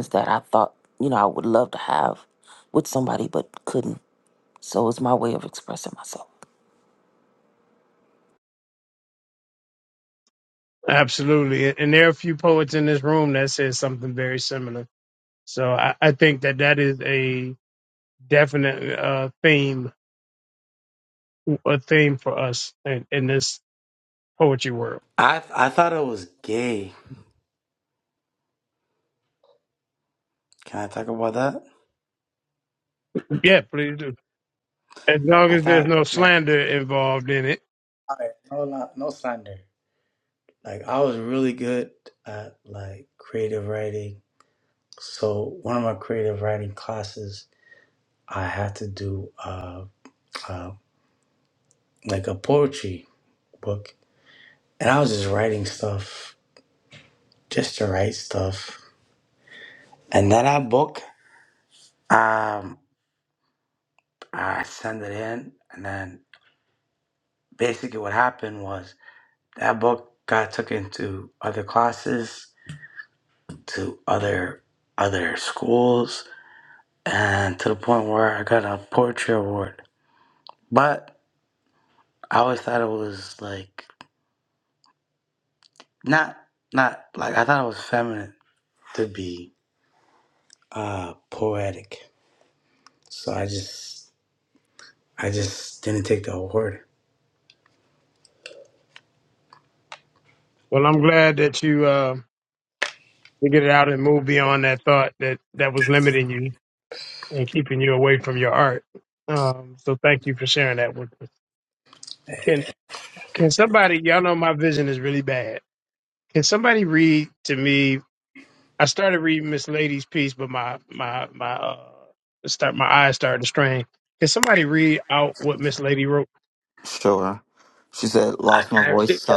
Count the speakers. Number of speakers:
four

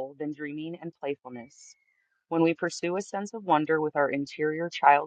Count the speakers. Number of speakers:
one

